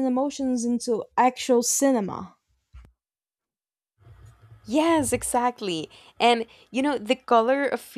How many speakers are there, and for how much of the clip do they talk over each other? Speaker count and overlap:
two, no overlap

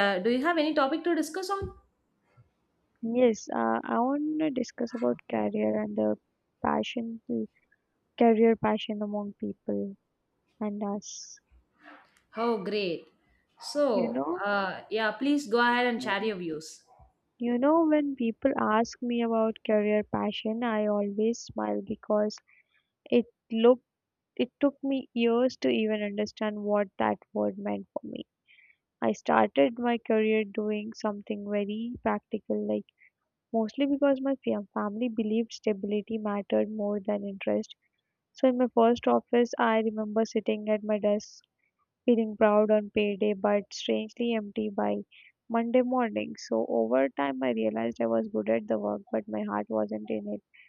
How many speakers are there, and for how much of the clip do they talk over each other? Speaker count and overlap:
two, about 2%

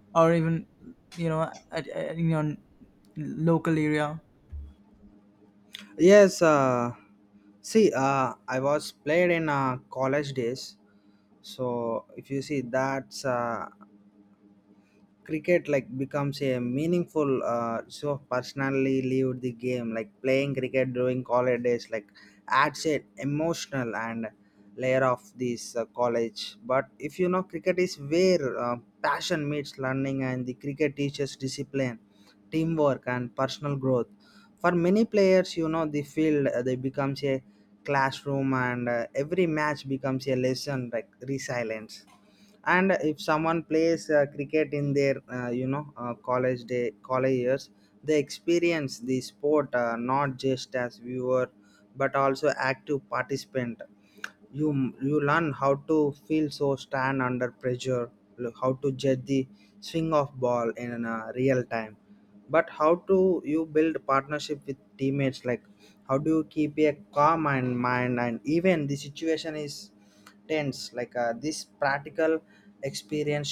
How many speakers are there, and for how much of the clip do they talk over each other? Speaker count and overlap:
two, no overlap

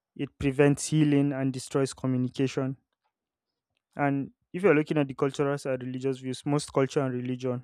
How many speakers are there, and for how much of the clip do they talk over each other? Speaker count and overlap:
one, no overlap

